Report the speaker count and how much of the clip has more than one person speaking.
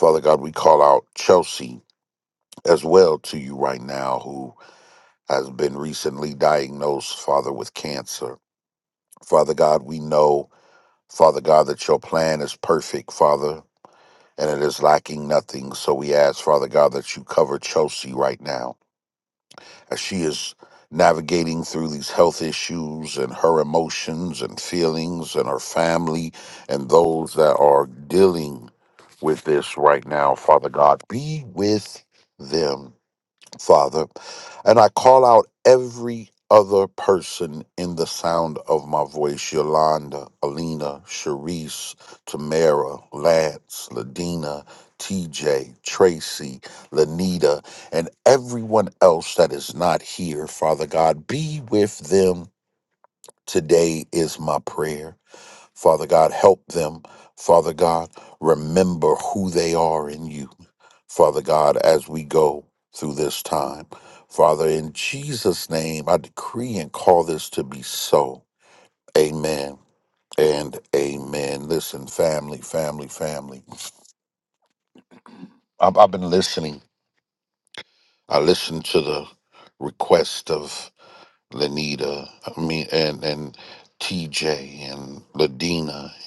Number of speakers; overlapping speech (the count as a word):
one, no overlap